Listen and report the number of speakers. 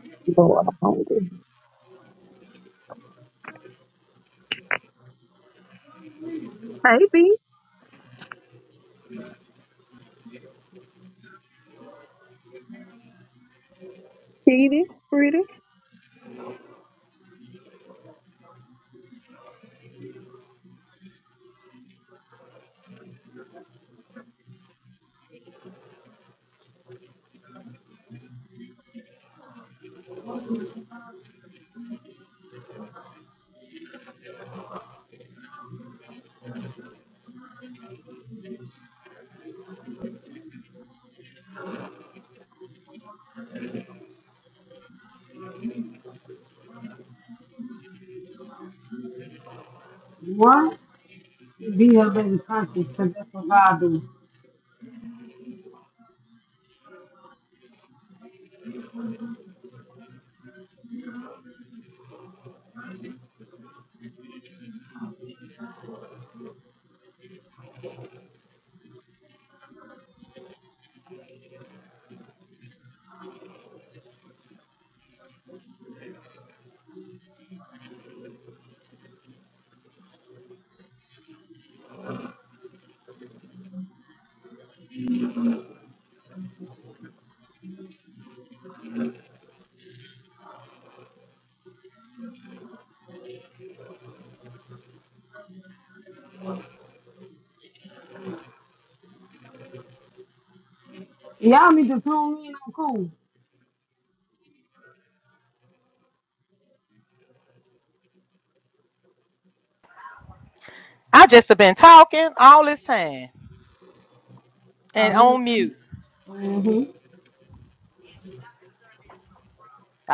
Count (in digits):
3